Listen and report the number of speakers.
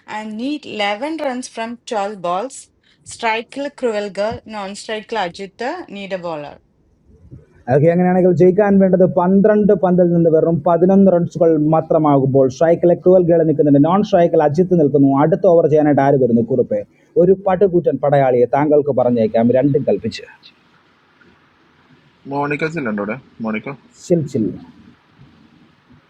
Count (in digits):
3